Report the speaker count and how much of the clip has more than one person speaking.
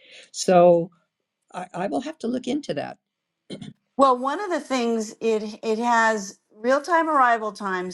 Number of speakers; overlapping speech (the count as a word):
two, no overlap